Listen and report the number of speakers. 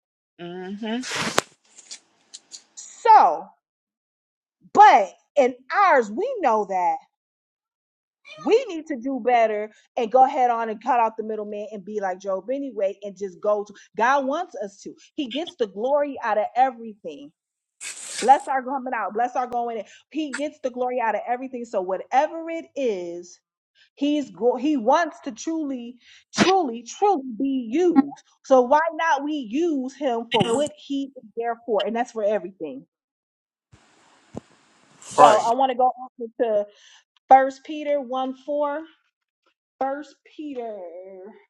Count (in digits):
2